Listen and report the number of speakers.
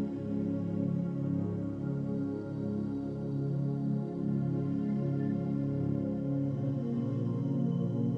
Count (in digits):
0